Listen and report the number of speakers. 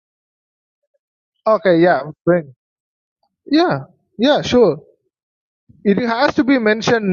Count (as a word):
one